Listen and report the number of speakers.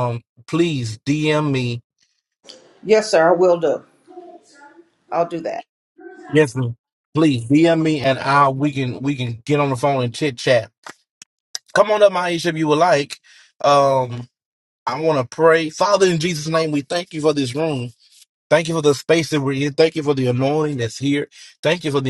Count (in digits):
2